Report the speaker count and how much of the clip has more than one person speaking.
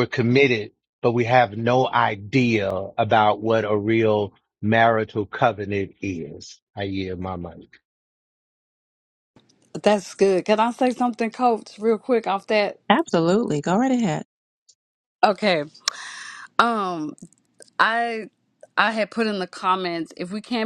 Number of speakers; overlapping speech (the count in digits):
3, no overlap